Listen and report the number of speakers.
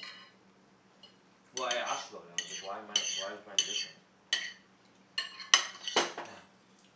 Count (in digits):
1